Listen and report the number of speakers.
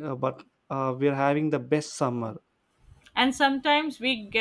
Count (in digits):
2